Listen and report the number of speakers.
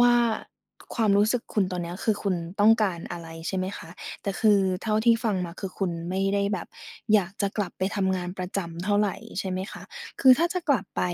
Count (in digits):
1